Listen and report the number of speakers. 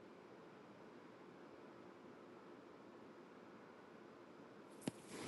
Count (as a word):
zero